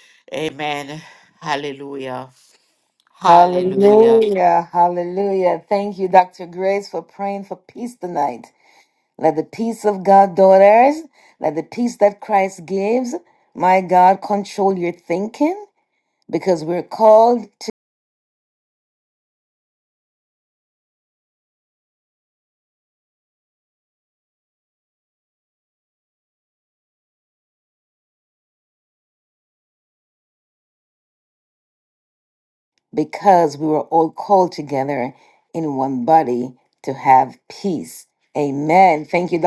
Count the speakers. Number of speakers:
two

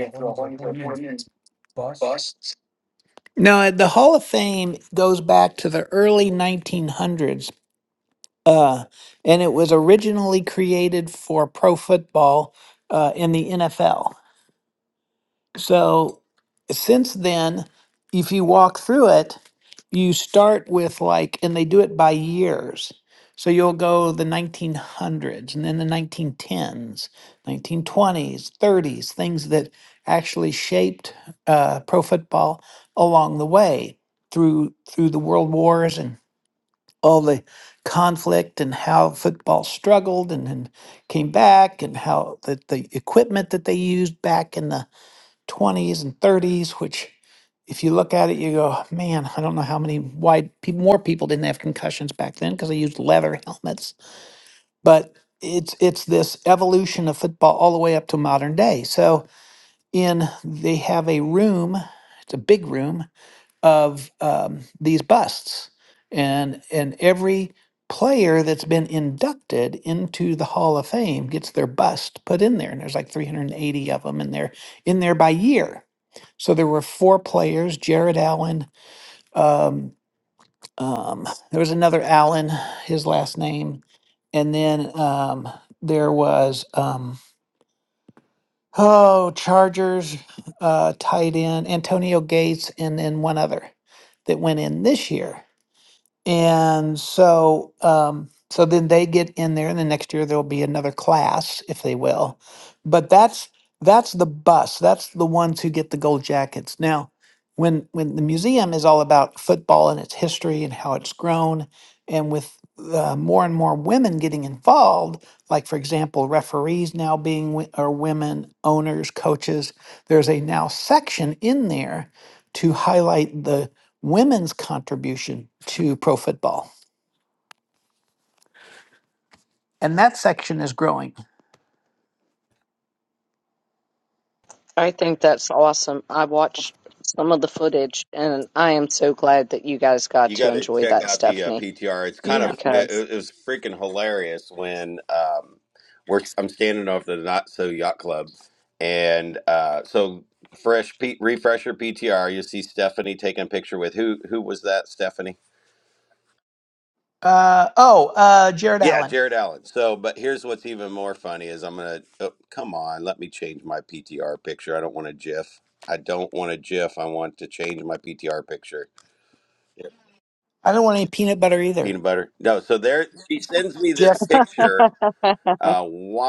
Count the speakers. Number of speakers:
four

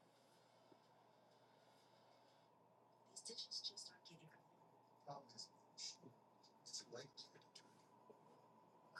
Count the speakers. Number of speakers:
zero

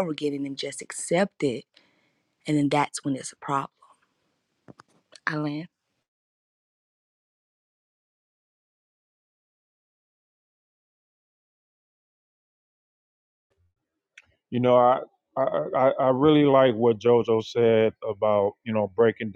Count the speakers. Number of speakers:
two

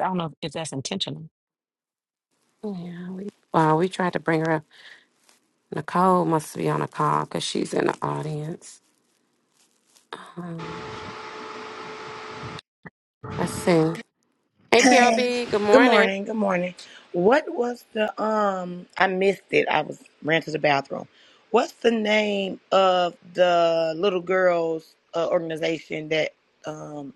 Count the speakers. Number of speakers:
three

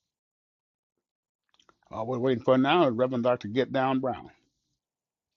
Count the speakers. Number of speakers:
one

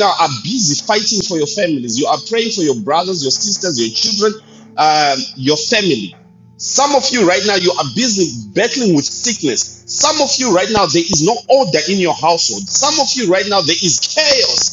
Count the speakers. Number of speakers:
one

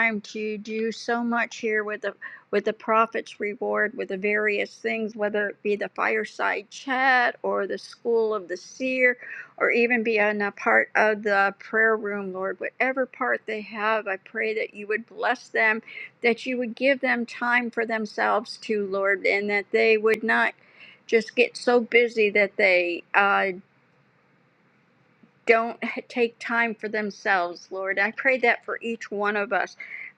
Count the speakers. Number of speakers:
one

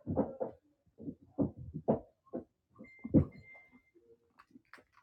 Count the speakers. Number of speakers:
zero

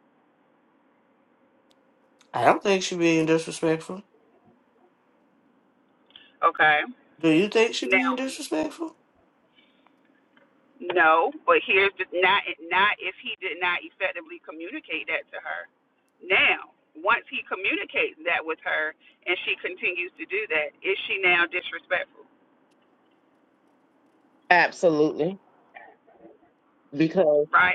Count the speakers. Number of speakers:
three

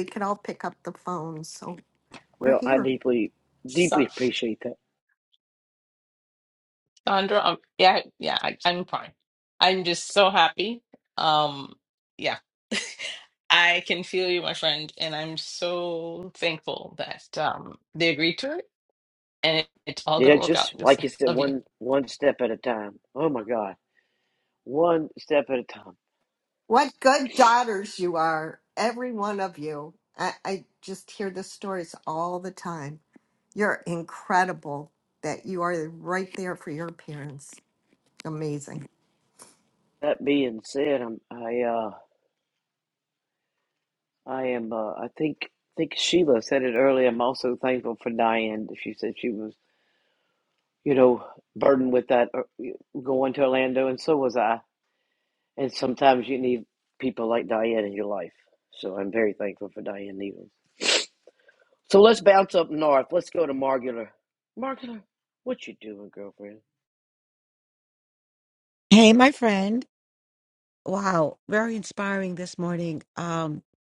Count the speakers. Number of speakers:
four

